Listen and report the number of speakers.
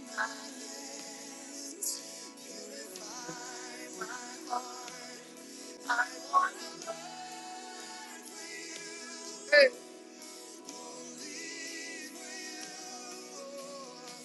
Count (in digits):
0